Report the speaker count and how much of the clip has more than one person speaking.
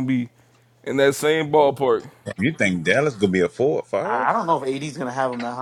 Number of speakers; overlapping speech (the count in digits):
3, about 4%